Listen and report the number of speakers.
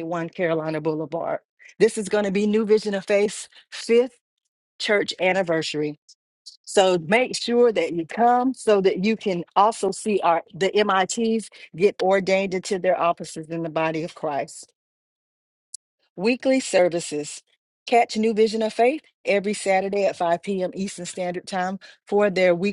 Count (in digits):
1